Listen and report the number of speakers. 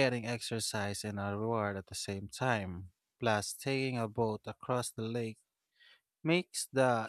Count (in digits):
1